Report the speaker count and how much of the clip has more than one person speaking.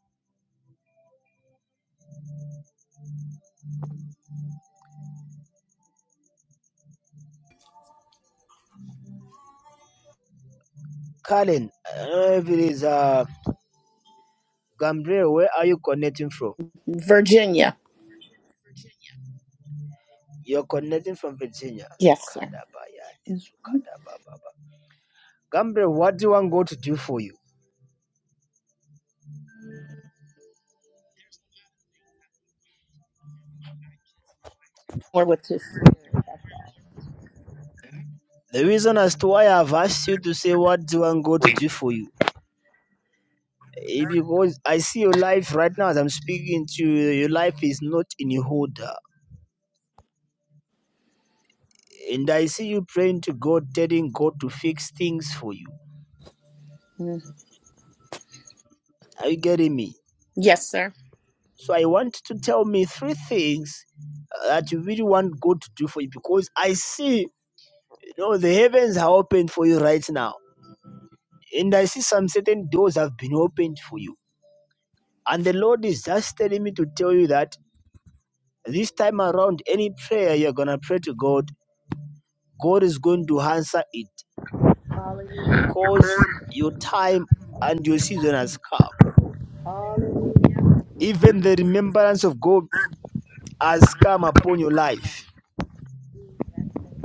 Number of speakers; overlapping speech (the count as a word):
two, under 1%